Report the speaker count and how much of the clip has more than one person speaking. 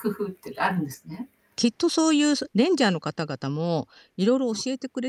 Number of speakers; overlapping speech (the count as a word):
two, about 2%